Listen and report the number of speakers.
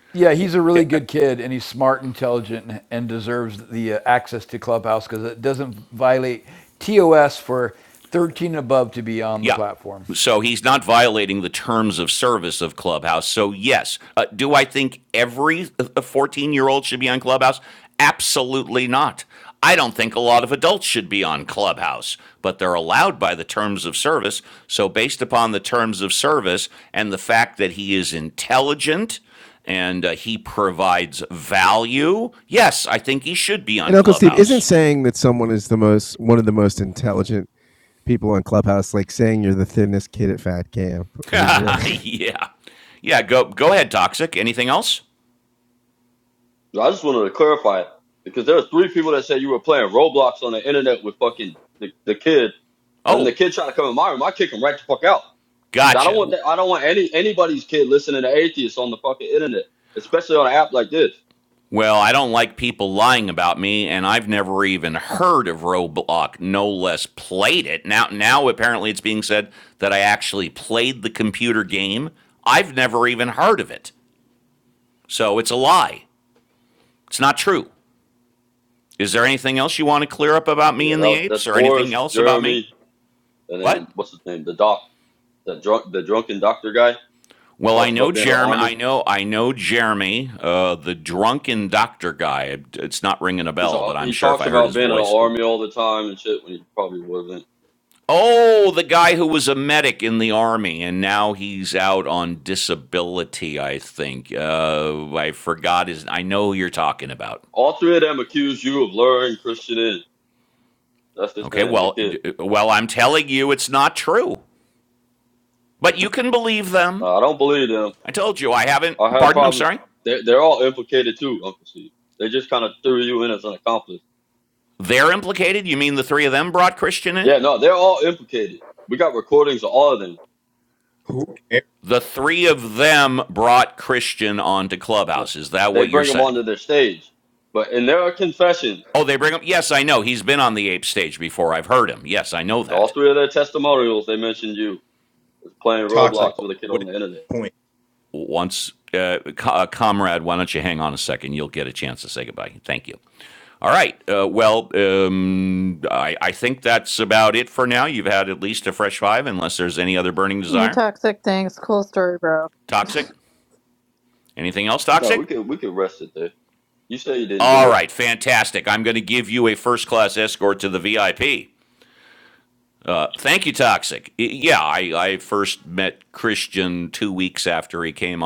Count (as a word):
six